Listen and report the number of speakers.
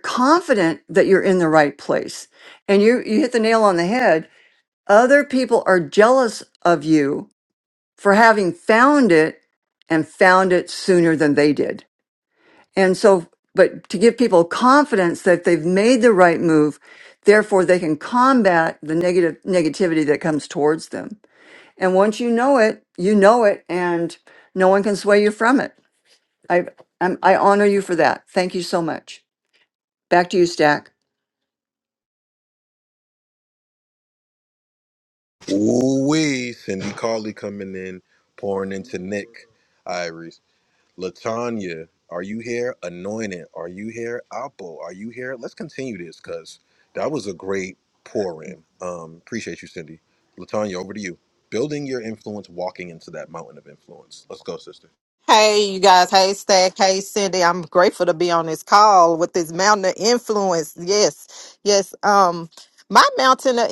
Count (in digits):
3